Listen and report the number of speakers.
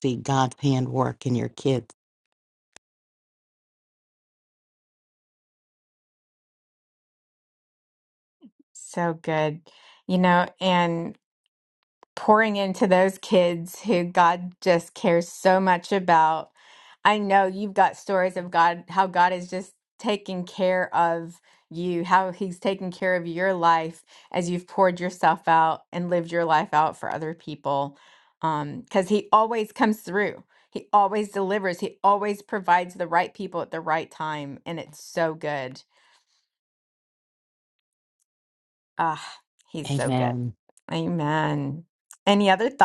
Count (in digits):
2